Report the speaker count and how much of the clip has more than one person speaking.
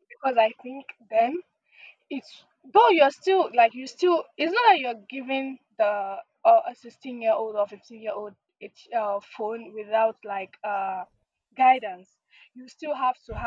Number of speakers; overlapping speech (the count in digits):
1, no overlap